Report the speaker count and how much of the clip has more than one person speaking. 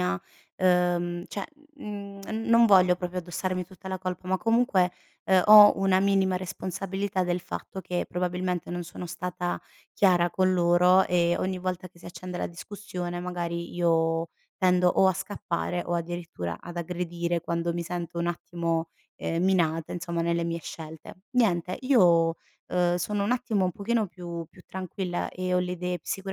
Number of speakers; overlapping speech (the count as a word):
one, no overlap